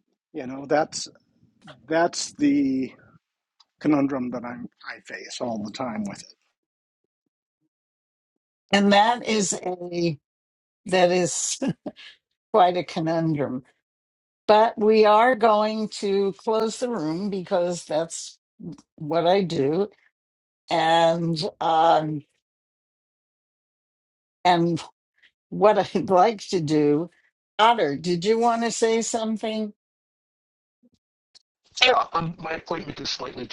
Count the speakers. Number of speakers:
3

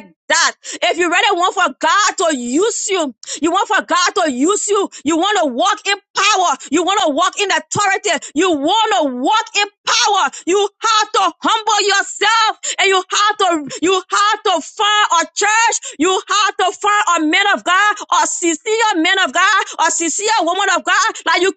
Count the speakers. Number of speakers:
1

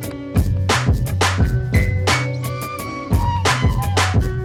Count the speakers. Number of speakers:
0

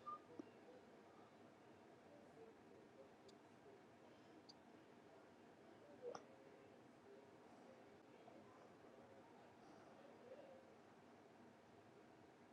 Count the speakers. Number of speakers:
0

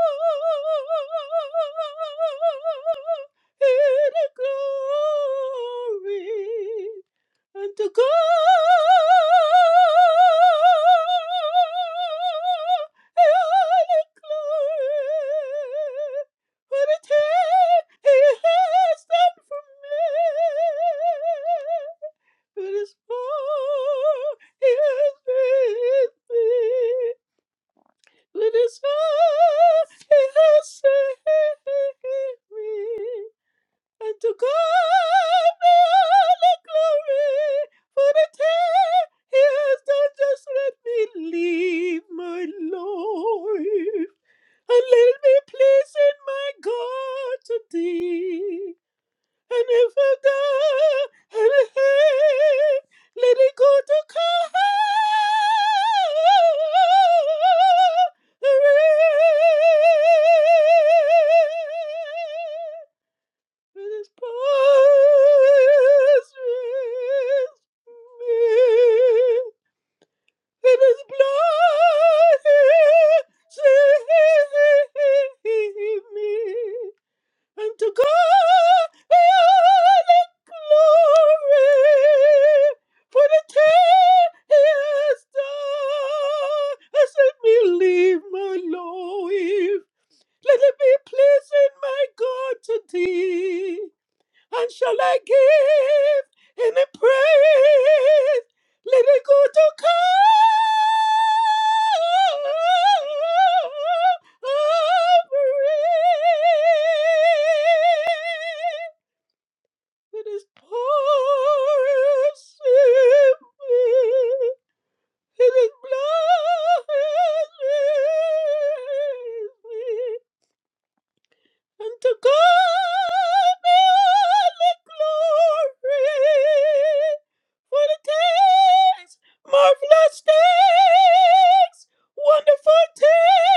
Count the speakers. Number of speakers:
1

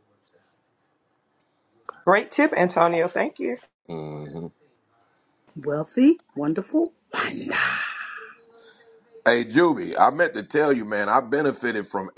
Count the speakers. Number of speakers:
3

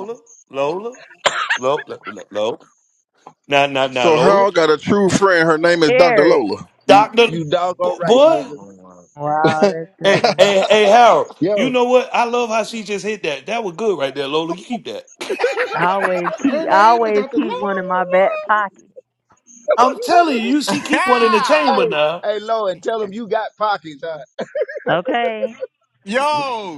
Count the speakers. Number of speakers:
5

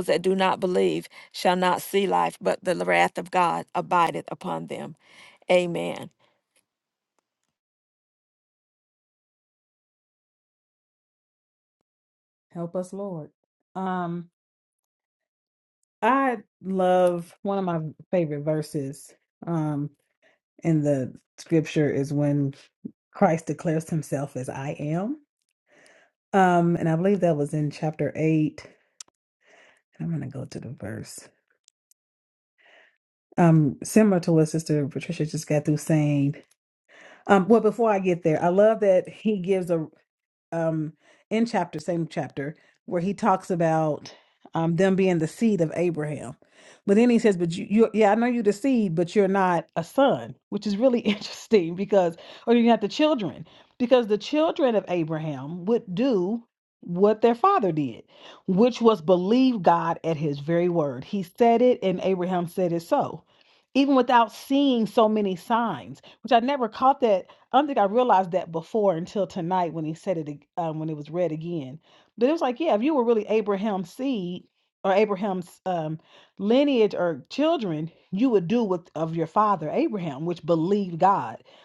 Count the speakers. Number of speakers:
2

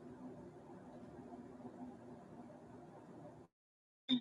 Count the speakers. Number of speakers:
0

